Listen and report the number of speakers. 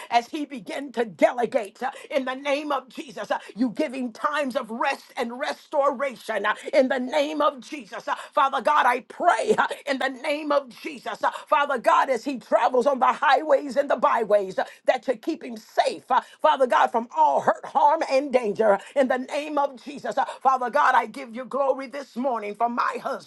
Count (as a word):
one